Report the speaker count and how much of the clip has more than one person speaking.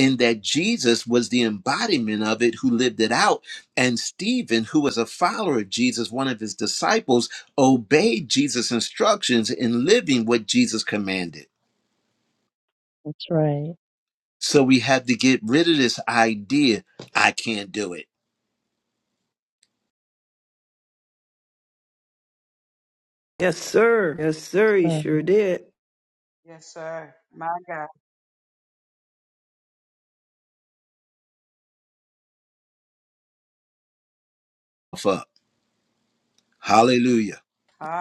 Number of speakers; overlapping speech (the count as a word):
four, about 1%